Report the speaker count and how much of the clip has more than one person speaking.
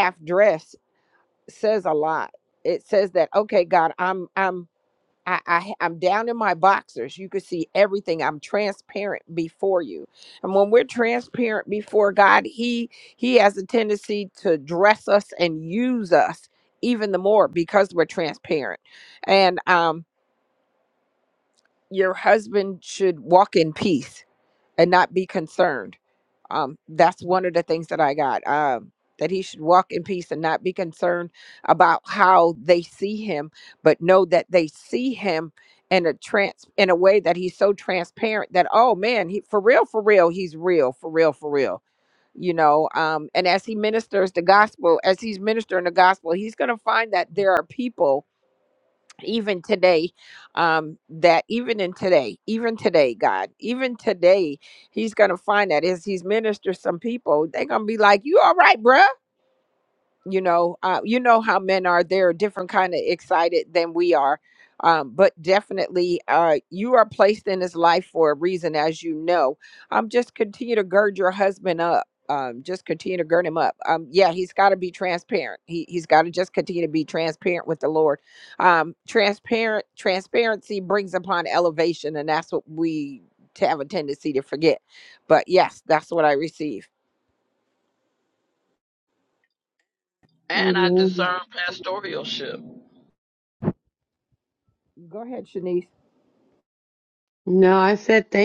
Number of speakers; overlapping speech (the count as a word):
three, about 1%